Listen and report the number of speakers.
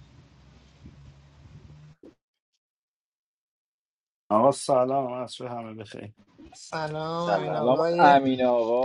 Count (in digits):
3